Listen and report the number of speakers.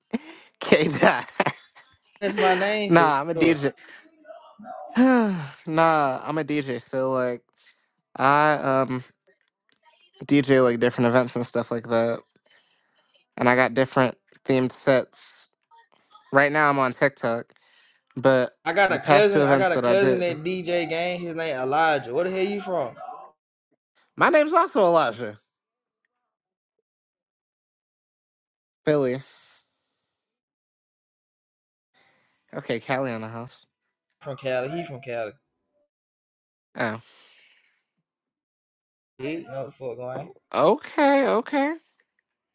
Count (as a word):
two